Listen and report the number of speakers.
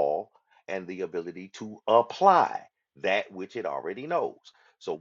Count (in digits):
1